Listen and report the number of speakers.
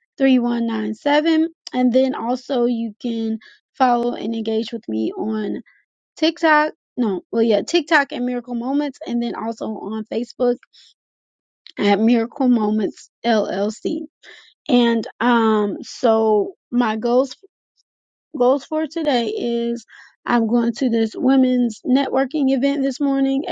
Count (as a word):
one